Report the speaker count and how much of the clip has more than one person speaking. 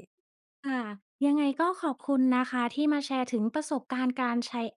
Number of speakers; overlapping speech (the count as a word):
one, no overlap